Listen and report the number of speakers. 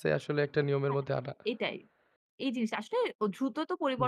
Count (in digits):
2